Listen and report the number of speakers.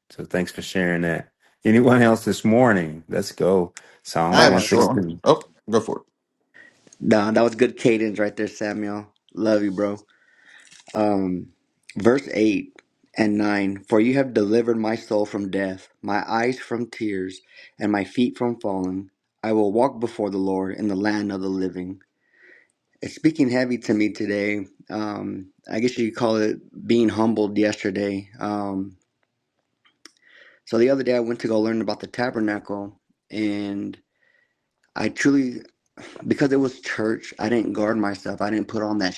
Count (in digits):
3